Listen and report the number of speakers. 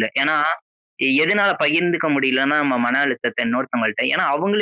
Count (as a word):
one